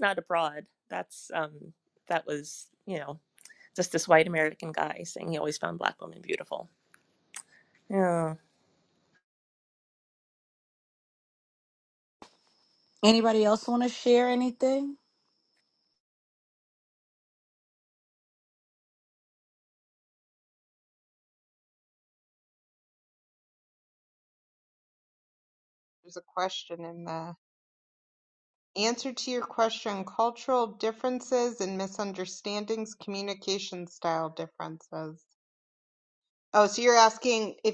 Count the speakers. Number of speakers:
3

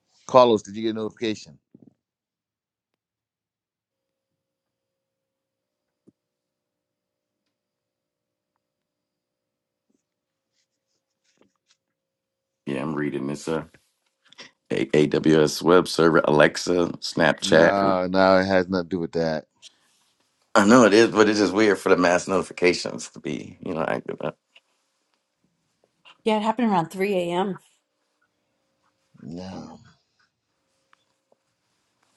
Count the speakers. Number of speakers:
3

